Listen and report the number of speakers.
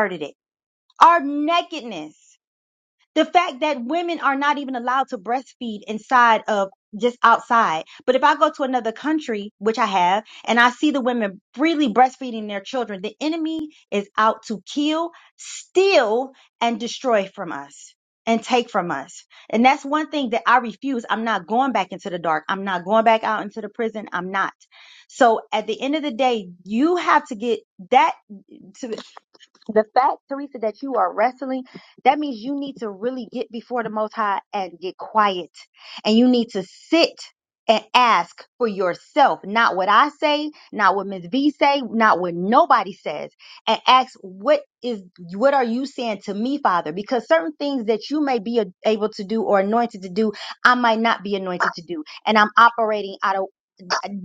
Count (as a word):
one